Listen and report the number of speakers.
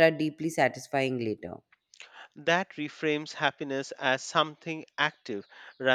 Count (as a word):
two